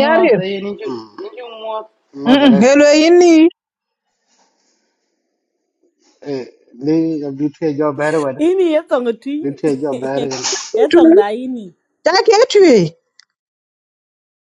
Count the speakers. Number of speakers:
four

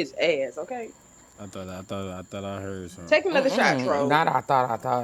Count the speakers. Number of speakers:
three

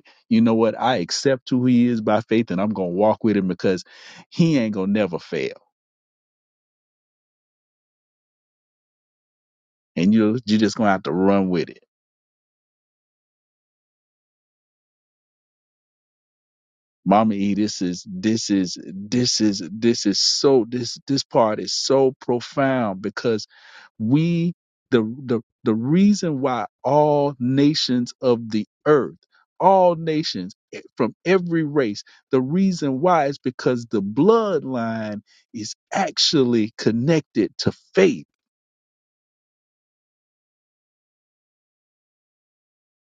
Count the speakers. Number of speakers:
one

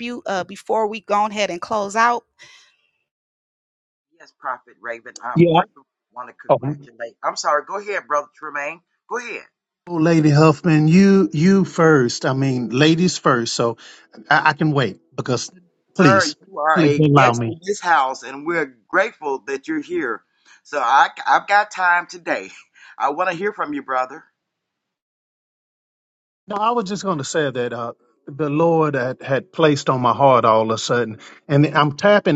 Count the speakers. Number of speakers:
three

